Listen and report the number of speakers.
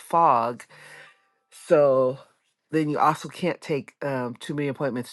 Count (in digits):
1